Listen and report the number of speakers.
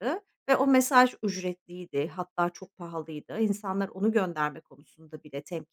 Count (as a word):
one